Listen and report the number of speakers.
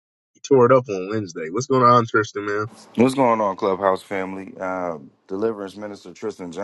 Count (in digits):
2